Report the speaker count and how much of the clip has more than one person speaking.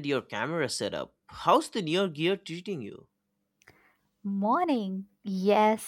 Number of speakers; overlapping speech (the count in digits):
2, no overlap